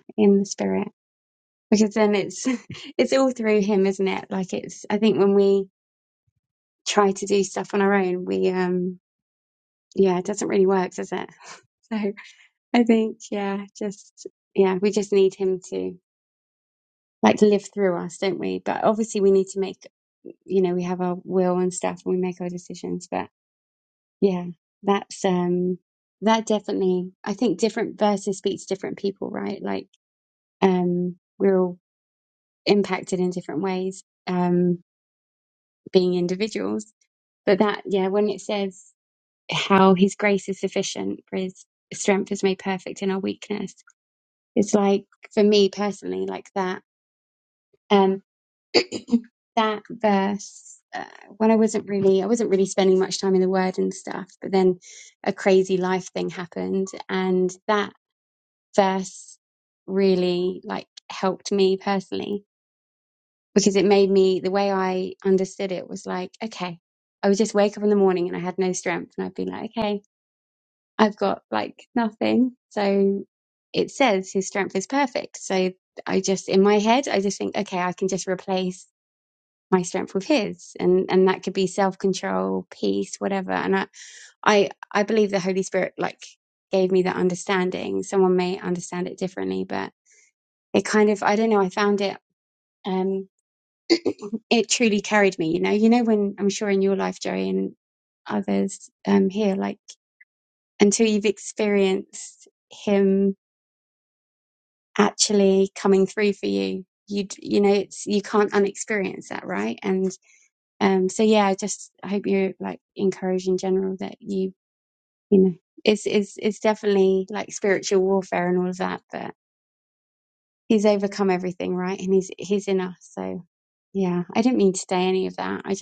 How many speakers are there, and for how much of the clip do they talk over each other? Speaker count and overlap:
1, no overlap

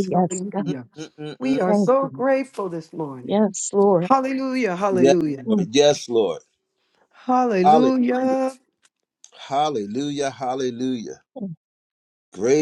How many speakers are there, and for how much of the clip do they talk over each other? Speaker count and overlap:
3, about 18%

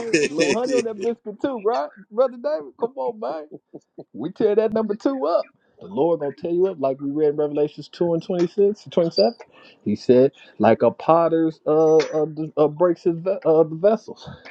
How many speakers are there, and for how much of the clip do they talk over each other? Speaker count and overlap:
1, no overlap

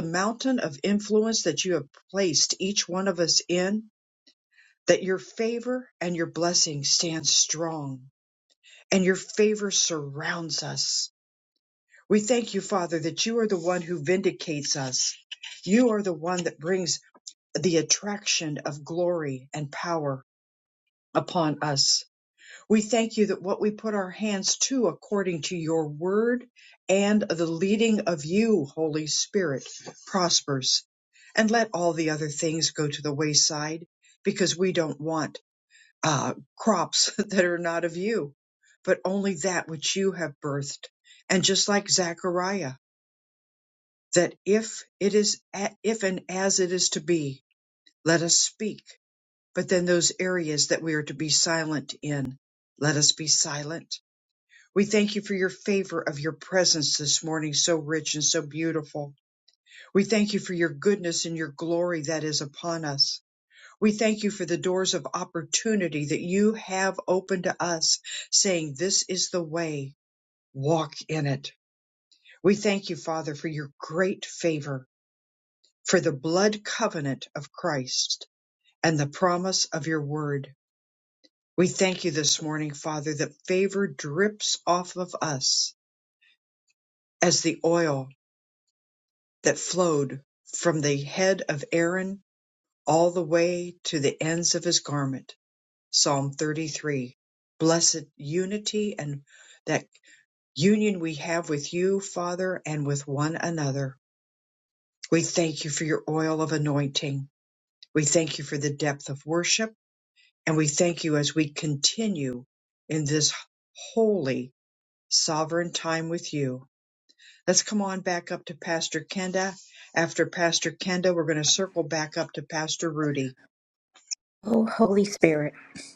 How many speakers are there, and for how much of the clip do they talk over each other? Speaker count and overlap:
2, no overlap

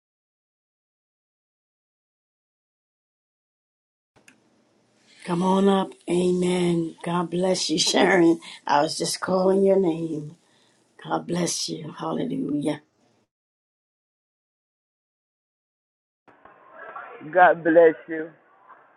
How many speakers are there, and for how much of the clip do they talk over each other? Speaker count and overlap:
2, no overlap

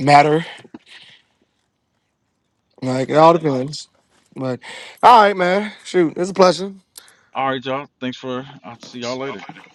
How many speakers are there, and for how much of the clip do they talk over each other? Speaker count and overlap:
2, about 6%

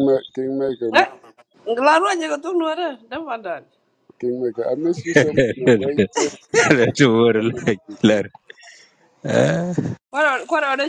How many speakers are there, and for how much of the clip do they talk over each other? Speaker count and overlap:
3, about 6%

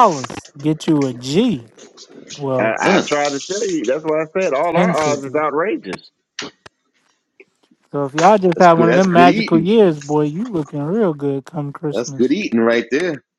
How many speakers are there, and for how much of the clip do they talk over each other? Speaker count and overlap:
3, about 17%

